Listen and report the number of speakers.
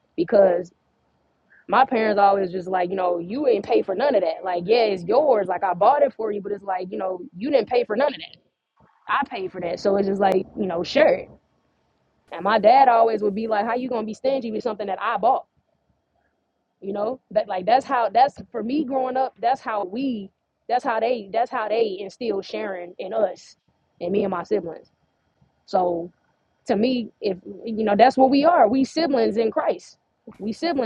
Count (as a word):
one